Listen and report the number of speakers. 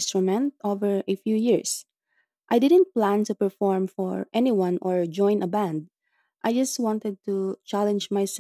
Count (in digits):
1